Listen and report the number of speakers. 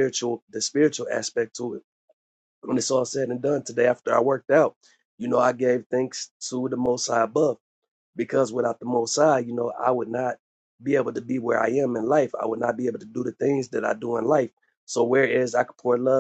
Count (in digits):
1